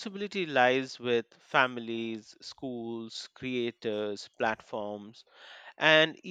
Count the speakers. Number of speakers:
1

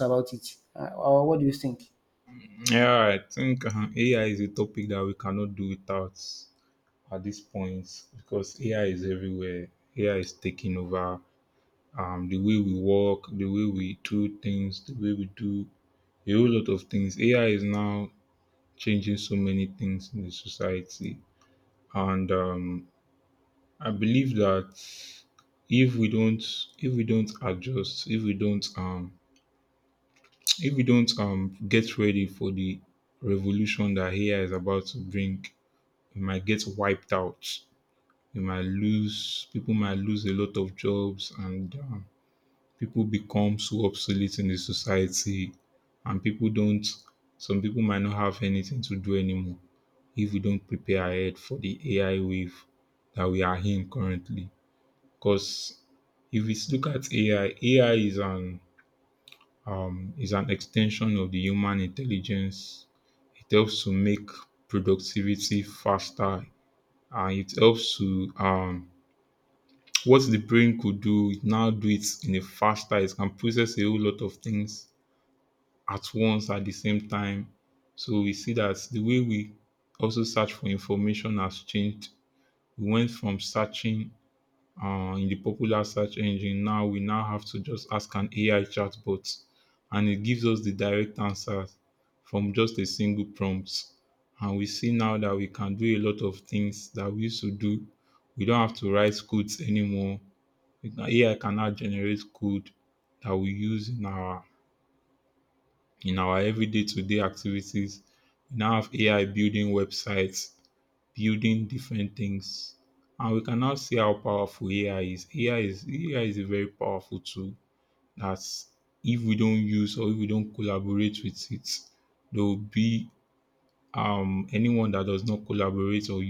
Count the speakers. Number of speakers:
2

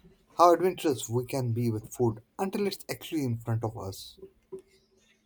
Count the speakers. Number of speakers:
1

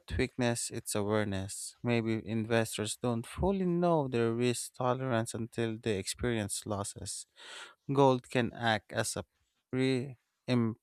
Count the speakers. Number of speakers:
1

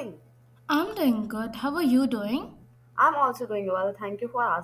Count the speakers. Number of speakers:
2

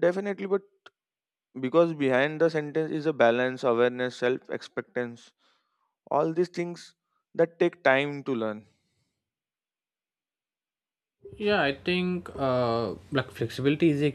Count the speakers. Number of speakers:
2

